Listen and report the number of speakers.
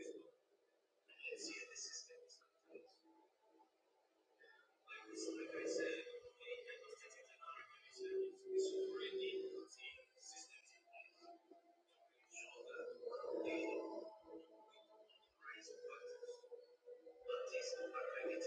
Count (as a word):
zero